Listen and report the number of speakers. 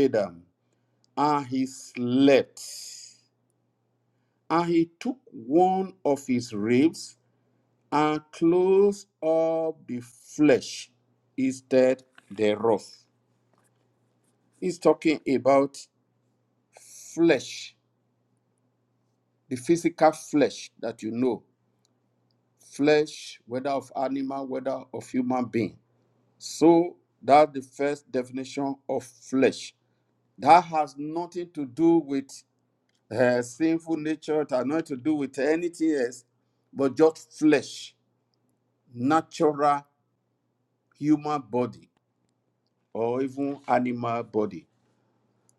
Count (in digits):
1